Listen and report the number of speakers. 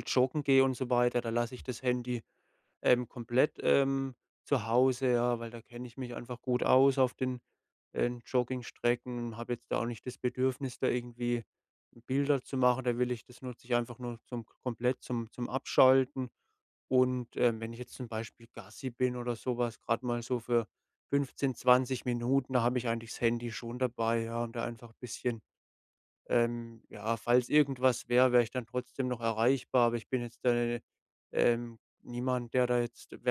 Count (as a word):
one